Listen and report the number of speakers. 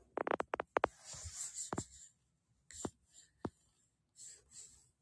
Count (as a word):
zero